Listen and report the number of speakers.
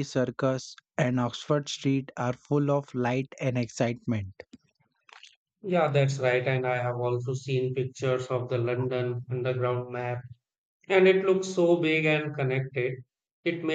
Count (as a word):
two